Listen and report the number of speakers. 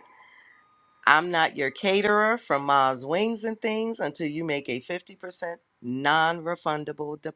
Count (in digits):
1